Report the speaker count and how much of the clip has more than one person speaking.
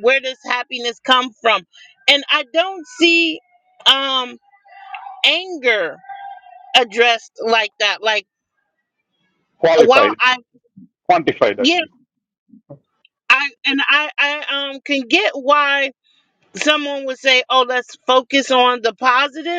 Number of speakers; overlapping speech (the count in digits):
2, about 3%